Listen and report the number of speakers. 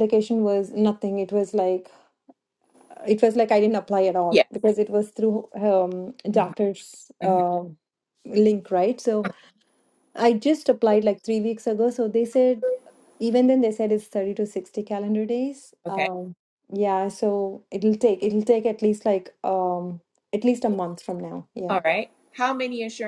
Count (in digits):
2